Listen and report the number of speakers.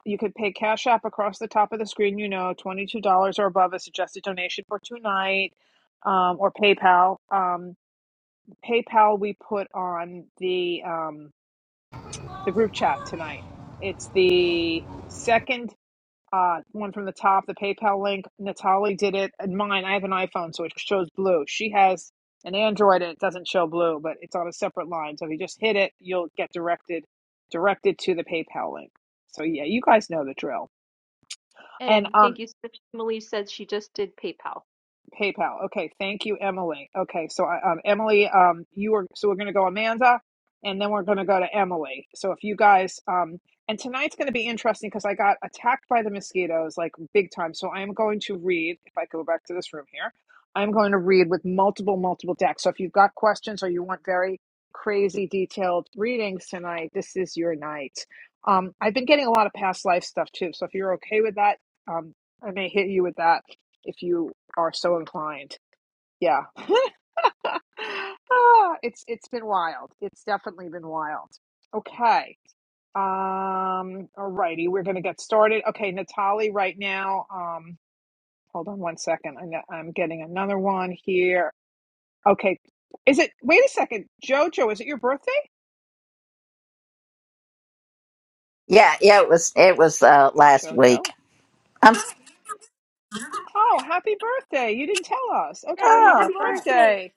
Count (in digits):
3